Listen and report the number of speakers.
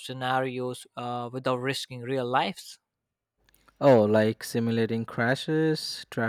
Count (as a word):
two